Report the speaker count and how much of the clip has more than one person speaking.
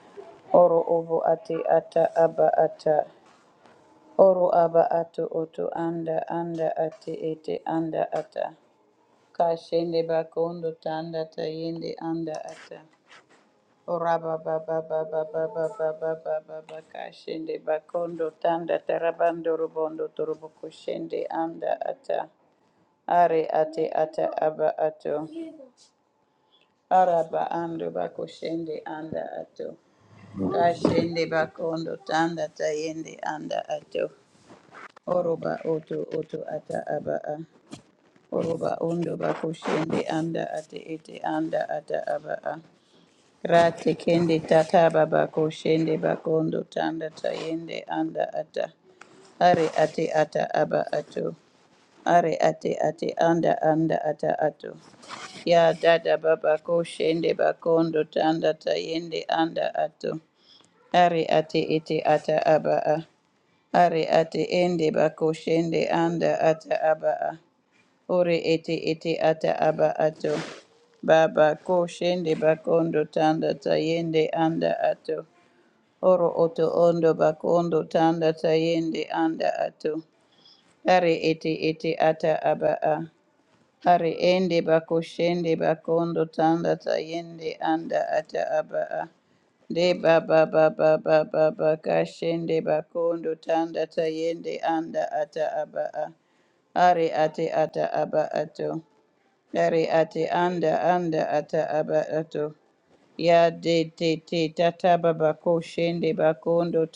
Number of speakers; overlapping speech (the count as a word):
one, no overlap